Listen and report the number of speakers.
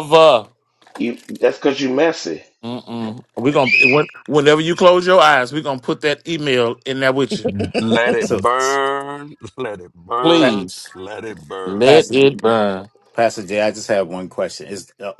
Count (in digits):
4